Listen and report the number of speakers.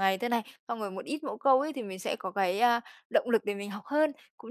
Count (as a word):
one